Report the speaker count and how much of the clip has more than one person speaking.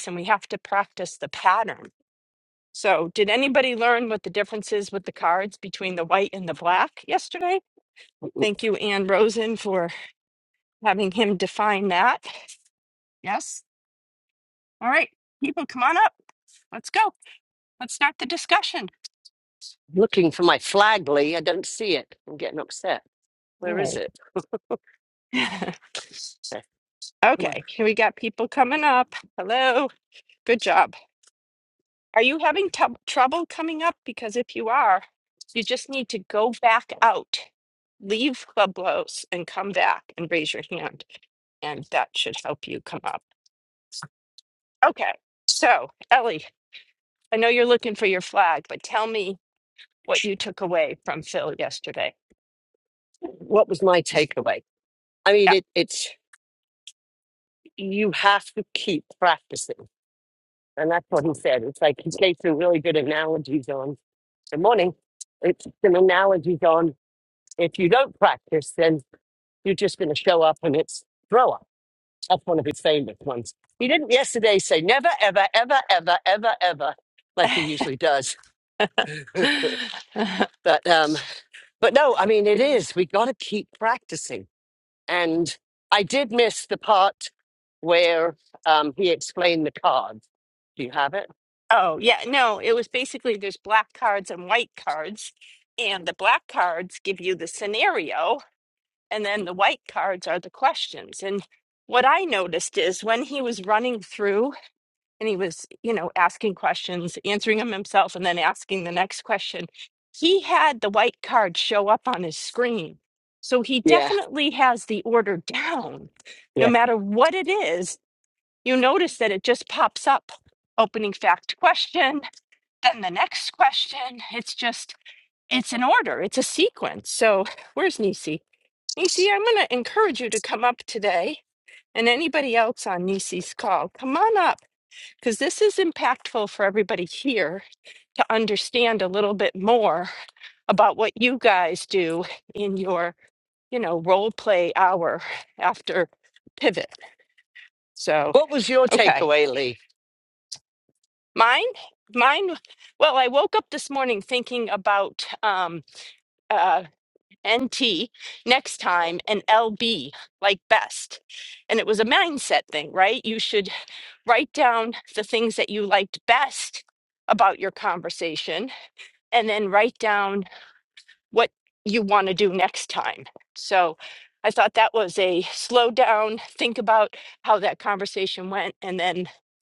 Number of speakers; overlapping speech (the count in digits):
2, about 1%